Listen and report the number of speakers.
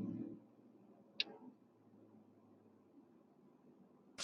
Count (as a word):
zero